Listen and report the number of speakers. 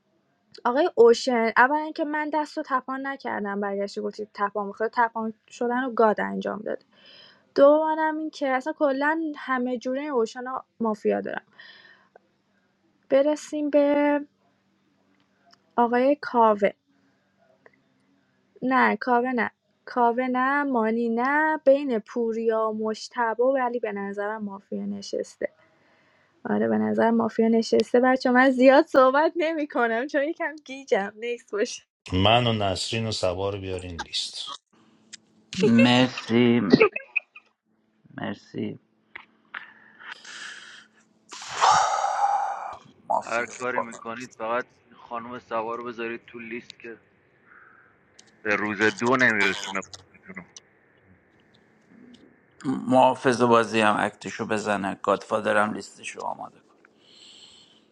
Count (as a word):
four